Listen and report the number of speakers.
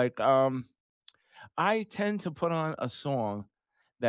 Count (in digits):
1